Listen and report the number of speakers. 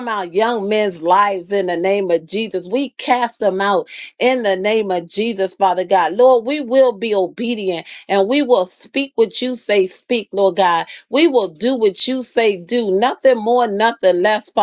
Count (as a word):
one